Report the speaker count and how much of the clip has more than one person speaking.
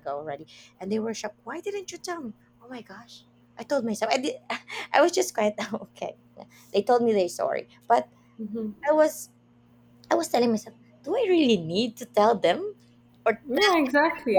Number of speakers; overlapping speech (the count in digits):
2, about 3%